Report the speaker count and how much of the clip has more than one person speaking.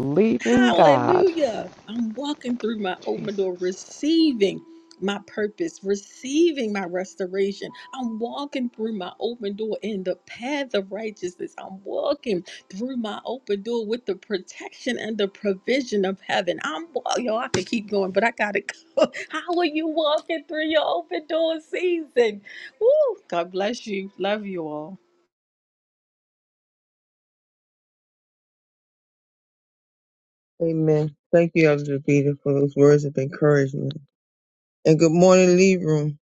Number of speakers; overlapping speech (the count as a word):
three, about 3%